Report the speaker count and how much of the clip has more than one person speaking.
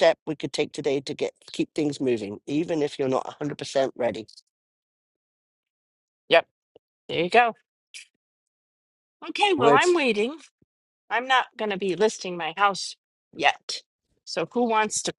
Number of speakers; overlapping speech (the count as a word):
two, about 2%